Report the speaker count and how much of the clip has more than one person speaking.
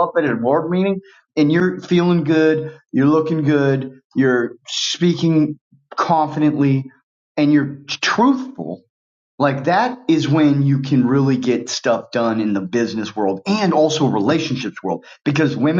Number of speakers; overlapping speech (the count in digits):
1, no overlap